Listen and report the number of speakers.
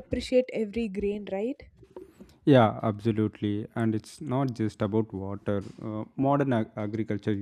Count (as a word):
two